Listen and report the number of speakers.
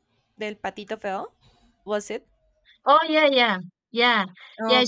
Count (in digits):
2